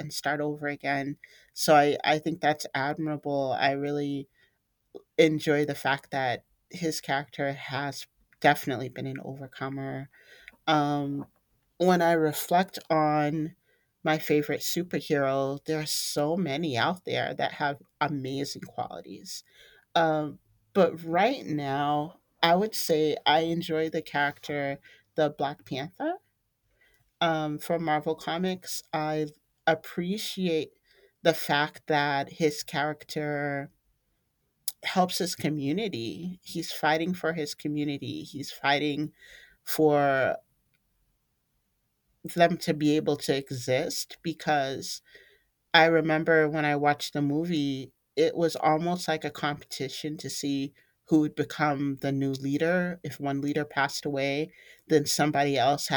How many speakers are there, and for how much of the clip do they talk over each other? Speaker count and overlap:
one, no overlap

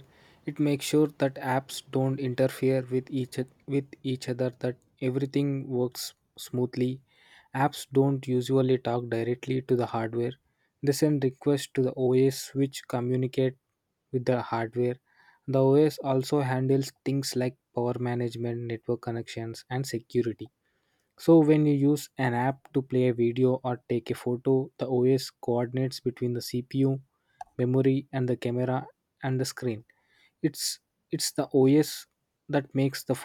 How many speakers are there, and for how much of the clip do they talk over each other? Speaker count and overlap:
one, no overlap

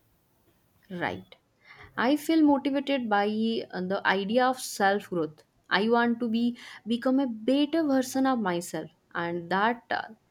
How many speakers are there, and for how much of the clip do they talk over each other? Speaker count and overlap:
one, no overlap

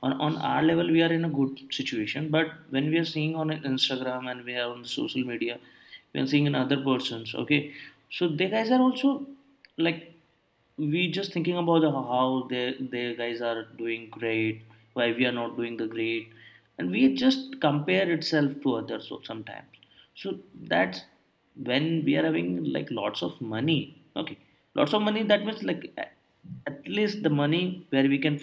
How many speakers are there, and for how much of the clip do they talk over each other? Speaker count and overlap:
one, no overlap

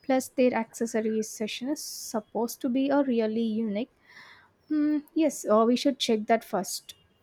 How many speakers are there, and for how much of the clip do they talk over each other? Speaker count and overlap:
one, no overlap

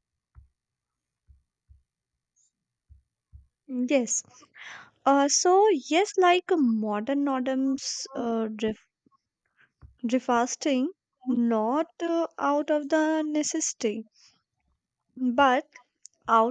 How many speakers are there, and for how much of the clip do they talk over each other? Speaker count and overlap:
one, no overlap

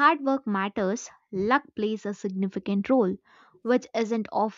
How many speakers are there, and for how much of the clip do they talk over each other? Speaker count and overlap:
one, no overlap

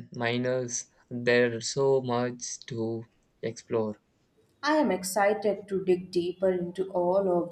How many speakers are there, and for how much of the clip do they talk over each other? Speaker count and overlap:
two, no overlap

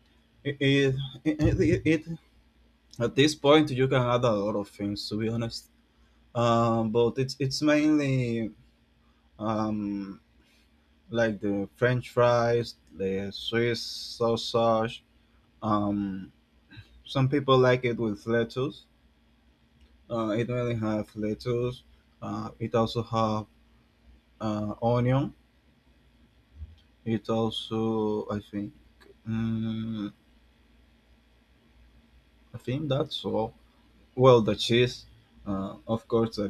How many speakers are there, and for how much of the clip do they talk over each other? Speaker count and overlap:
one, no overlap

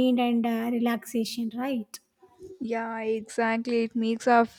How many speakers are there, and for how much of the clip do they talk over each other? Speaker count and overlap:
two, no overlap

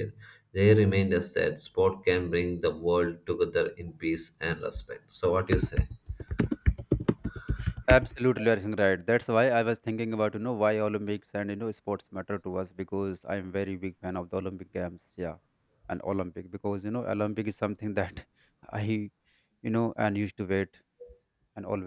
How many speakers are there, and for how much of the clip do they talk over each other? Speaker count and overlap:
two, no overlap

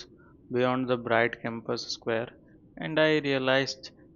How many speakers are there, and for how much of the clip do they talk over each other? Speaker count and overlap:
one, no overlap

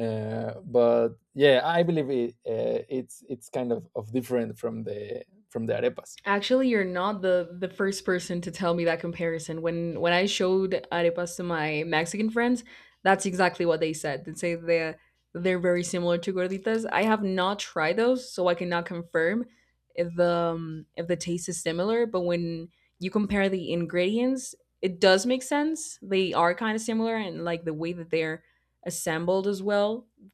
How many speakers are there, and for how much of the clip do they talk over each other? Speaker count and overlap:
two, no overlap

